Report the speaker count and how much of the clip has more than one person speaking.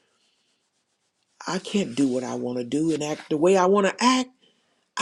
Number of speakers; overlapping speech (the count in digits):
1, no overlap